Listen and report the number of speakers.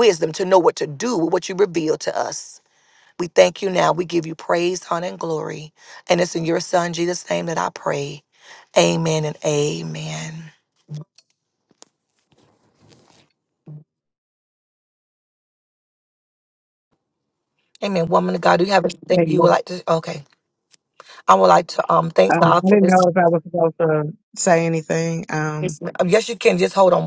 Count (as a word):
two